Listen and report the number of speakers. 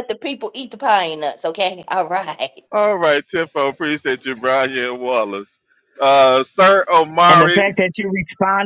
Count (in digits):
3